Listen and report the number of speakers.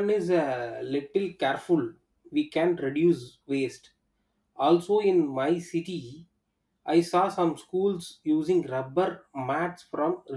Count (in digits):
1